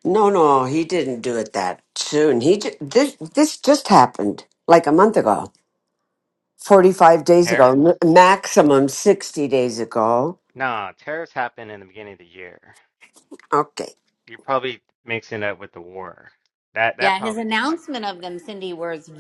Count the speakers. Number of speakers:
three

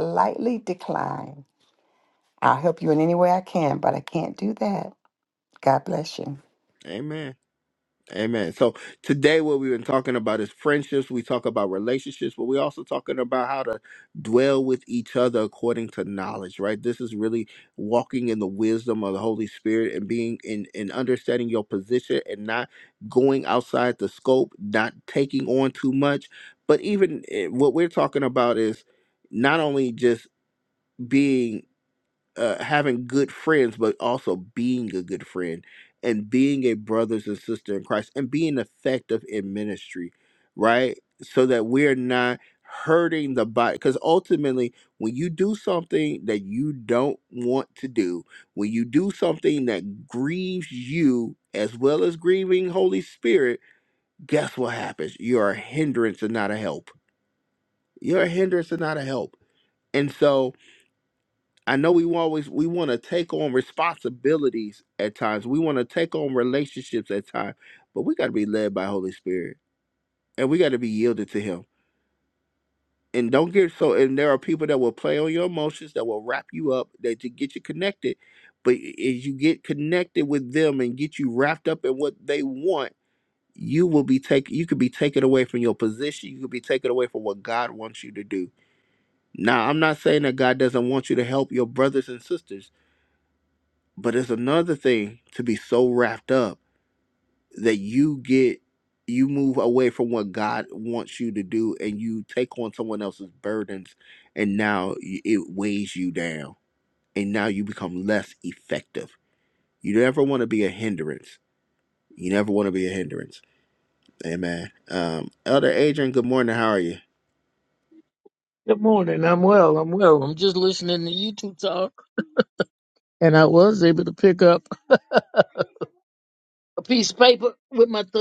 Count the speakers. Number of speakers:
three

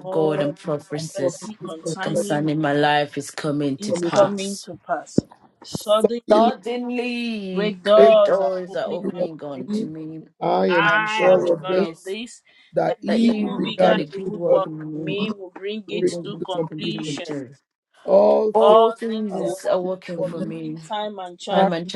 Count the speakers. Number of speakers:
three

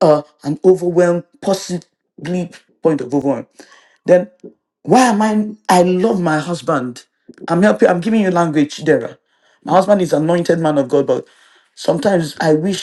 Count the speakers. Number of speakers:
one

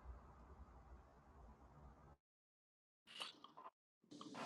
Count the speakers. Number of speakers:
zero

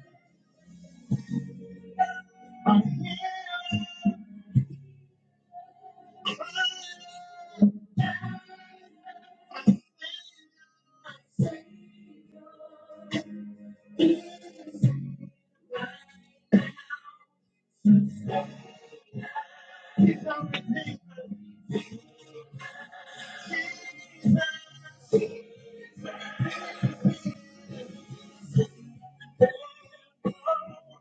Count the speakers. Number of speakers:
zero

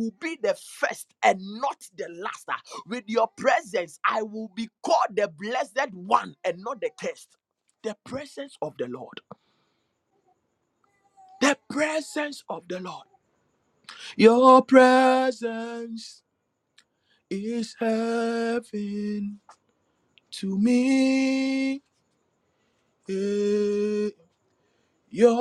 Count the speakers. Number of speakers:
one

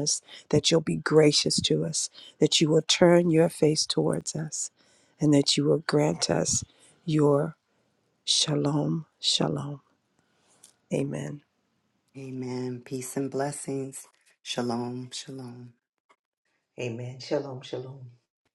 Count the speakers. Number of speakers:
three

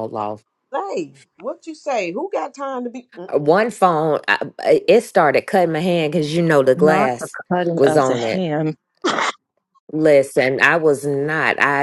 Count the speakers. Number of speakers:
three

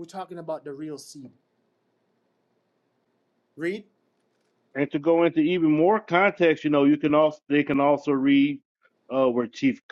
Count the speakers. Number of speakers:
two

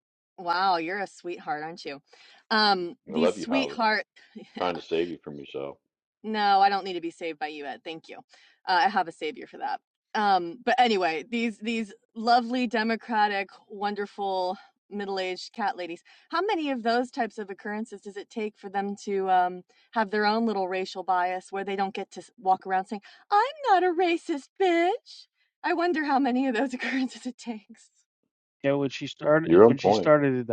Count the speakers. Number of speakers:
three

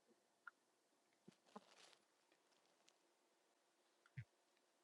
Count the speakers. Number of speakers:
zero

